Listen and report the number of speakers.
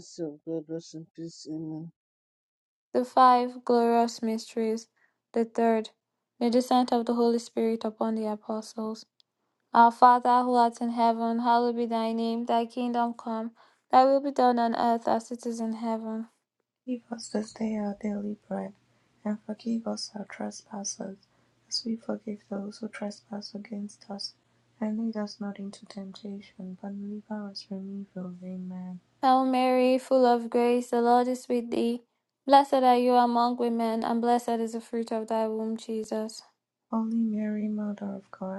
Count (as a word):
three